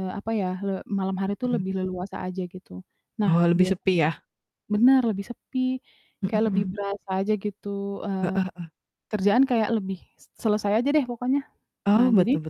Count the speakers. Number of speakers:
2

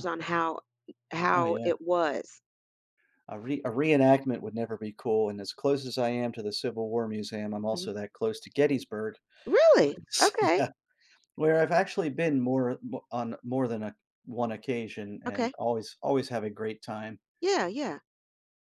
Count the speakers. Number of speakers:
2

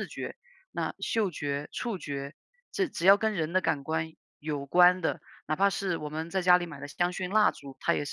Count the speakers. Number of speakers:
1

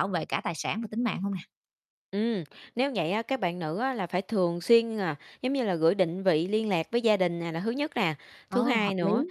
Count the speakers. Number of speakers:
2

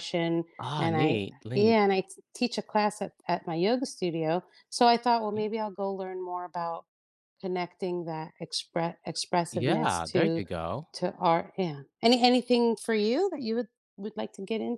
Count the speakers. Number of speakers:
2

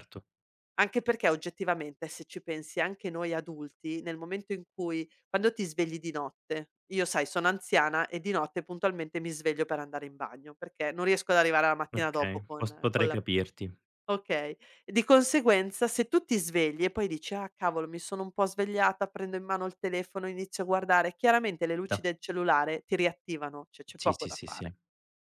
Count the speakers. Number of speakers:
2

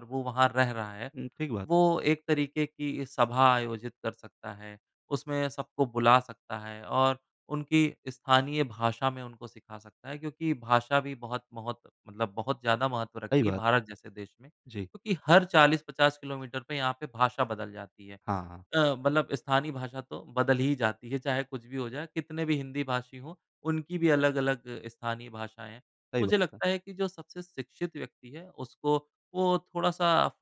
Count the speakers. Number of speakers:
2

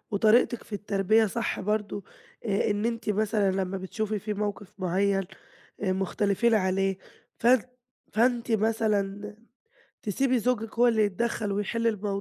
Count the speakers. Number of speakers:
1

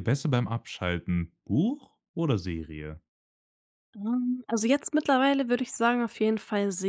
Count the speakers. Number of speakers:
2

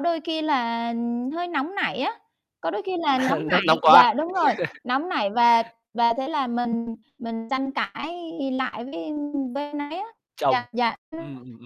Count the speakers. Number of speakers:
2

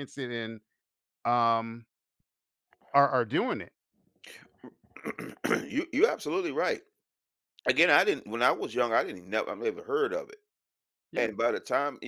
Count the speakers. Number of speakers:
2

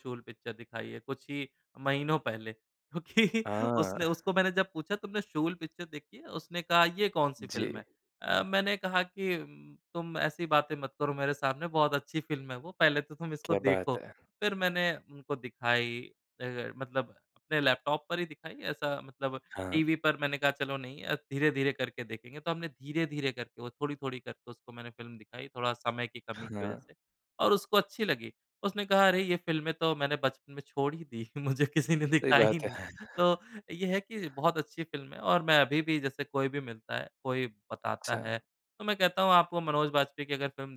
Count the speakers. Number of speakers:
2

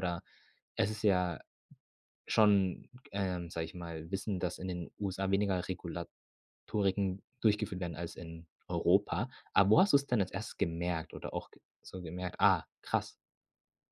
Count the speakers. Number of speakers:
1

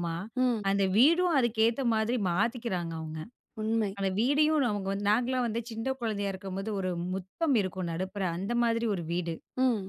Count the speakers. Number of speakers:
2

